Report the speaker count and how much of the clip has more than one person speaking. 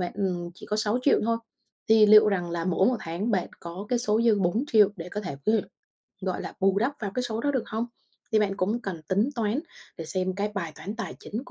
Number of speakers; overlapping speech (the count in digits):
1, no overlap